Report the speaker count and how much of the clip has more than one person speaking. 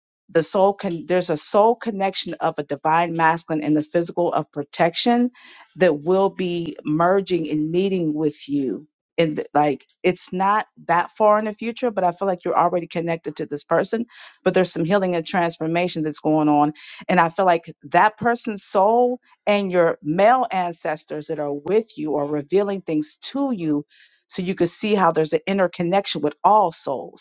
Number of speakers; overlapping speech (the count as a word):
one, no overlap